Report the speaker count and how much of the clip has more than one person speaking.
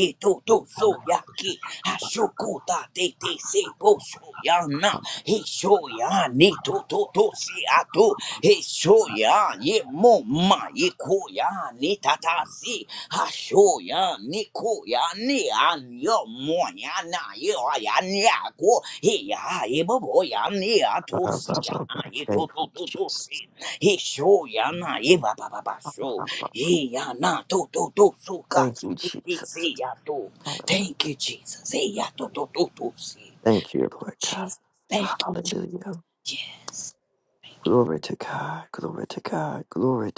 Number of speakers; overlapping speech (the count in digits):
2, about 4%